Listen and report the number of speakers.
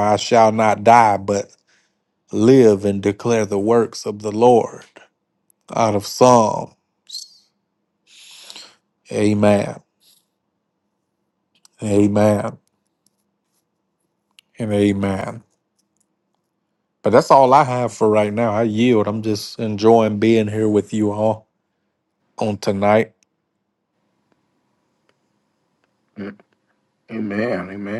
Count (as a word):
two